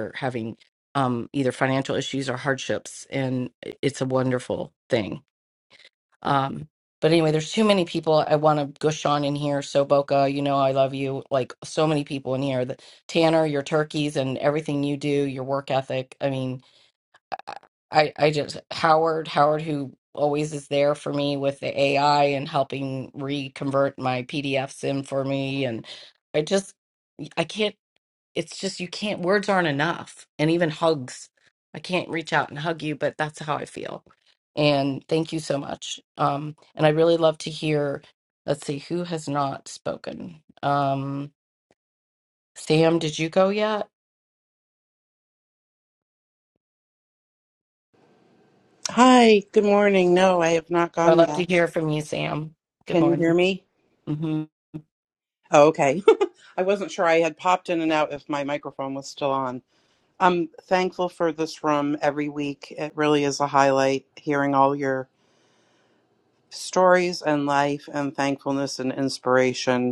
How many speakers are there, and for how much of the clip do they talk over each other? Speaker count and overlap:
2, about 1%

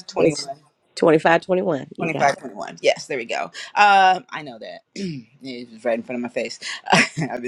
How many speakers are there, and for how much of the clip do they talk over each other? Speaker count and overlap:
2, about 7%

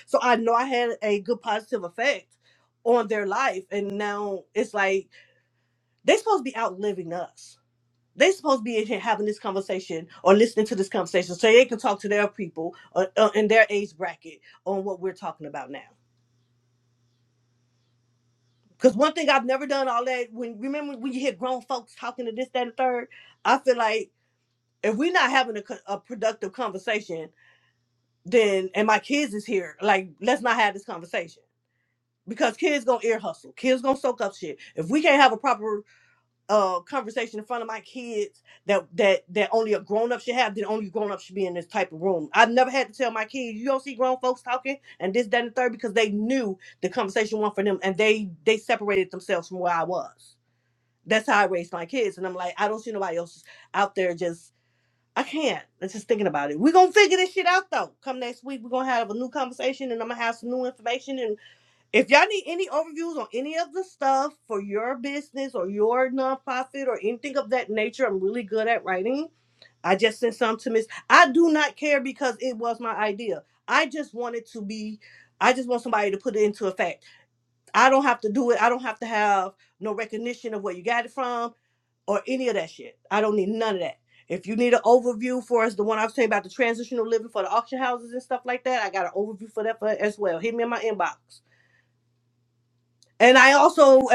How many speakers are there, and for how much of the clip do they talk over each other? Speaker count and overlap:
1, no overlap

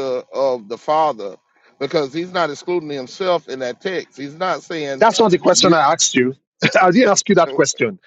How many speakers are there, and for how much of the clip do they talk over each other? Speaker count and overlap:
2, about 3%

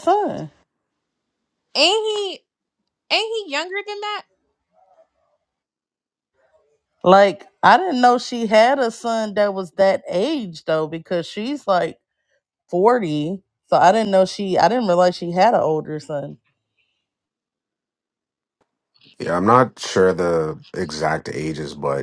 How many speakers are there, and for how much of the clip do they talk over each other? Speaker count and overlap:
3, no overlap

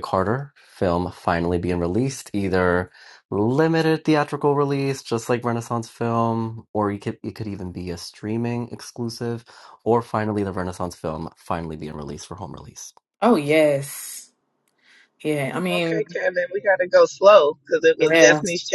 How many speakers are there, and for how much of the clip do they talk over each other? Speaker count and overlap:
3, about 4%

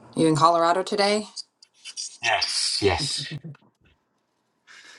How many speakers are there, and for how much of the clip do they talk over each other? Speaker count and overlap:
2, no overlap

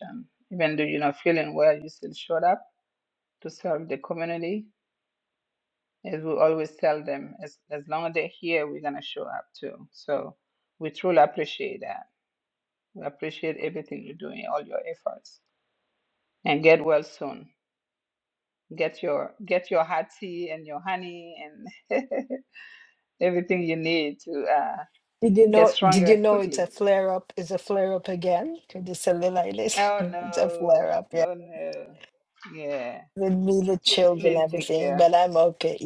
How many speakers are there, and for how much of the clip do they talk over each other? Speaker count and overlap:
2, about 10%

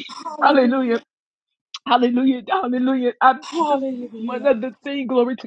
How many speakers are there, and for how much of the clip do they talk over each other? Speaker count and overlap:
2, about 22%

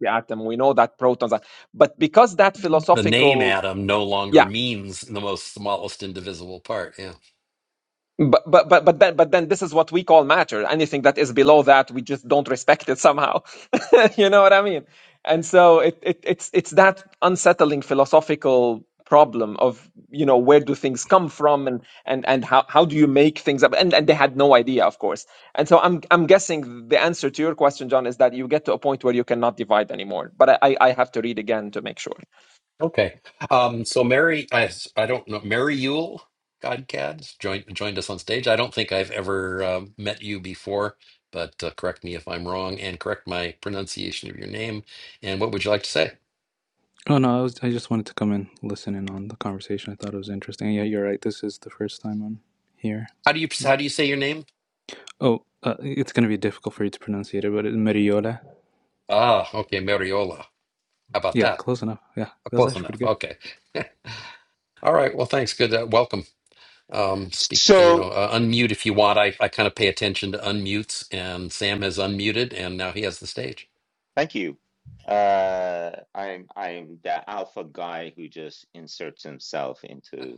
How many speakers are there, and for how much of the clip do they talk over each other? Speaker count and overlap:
4, about 3%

